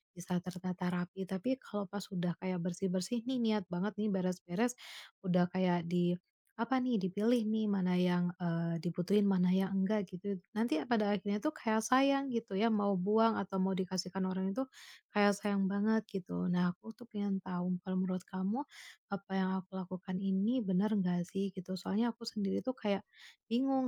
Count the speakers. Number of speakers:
1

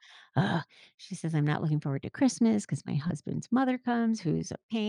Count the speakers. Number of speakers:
1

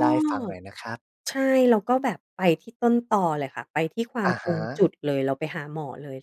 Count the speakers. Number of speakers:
2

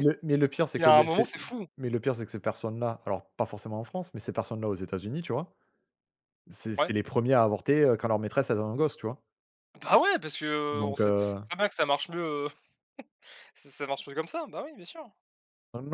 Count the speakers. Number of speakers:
2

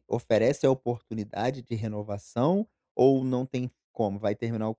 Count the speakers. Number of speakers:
1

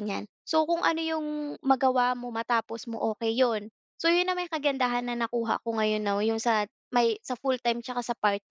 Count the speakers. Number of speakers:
1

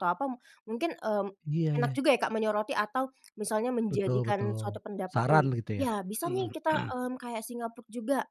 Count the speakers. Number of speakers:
2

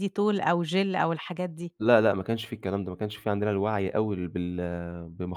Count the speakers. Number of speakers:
2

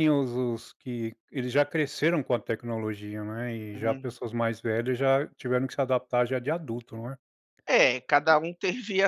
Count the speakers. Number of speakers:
2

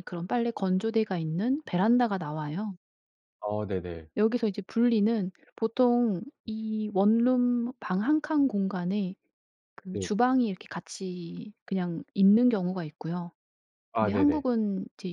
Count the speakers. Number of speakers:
2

